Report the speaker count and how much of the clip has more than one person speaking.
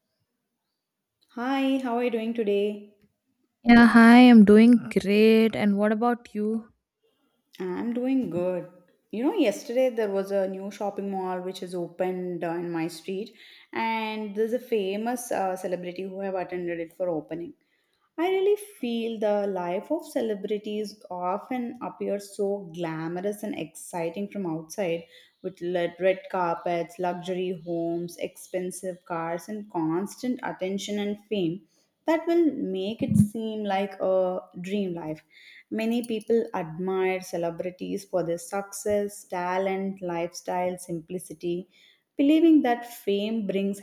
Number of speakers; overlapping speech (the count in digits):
2, no overlap